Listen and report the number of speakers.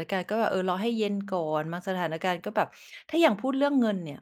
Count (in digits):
1